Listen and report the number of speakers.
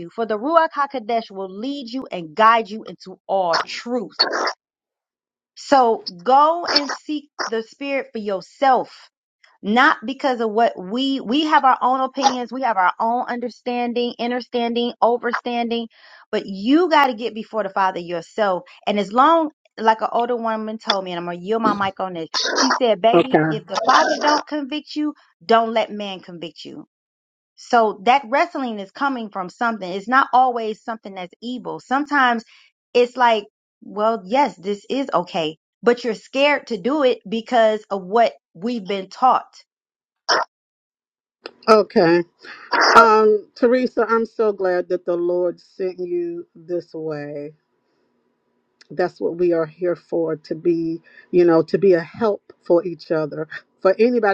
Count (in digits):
2